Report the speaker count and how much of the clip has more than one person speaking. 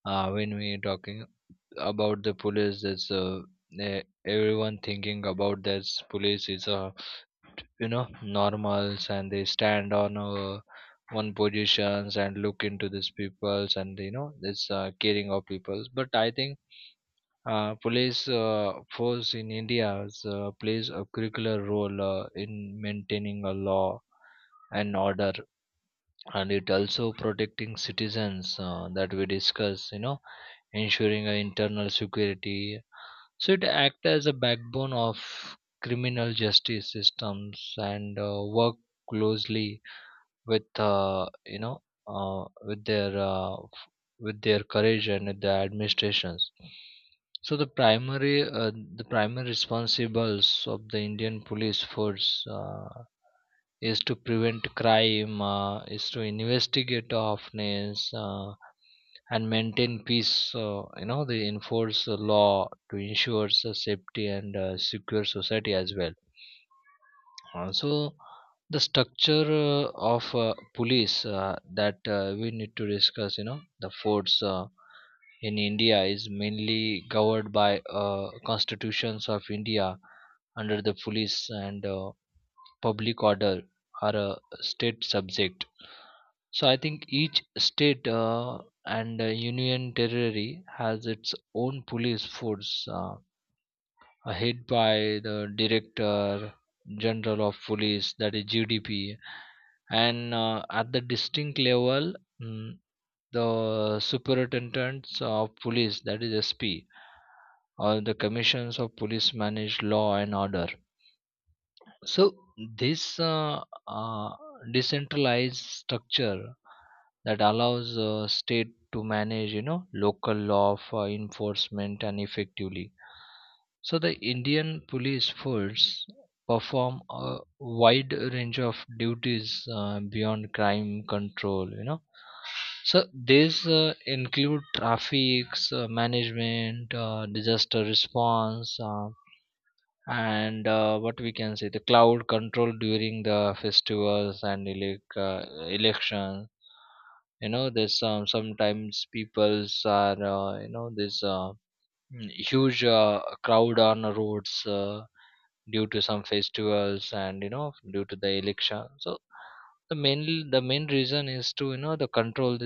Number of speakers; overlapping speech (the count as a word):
one, no overlap